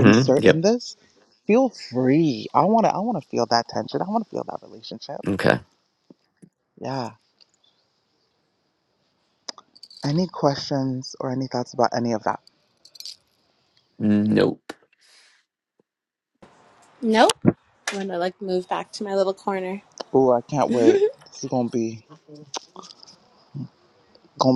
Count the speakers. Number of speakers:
3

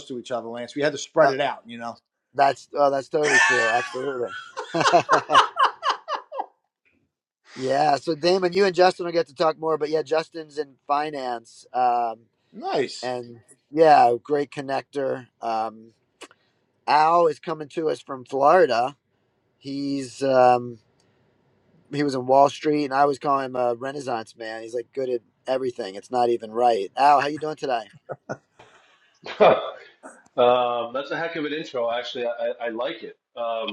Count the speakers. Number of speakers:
3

